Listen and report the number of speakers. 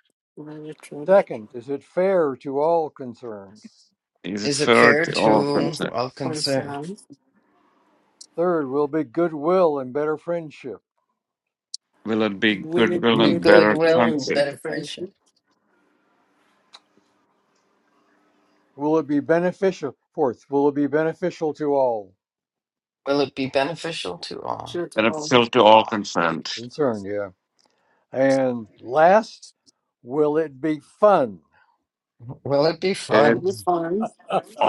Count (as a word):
four